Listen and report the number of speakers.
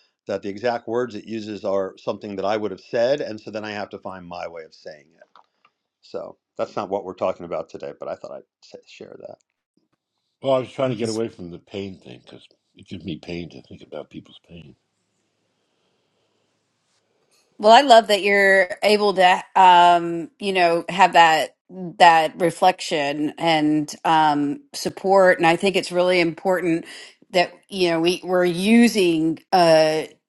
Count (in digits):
3